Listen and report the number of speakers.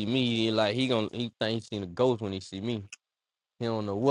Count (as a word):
one